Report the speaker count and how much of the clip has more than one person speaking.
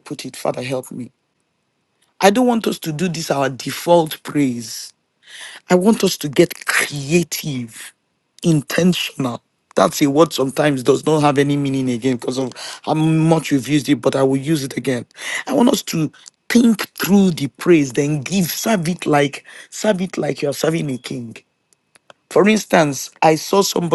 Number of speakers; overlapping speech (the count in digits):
1, no overlap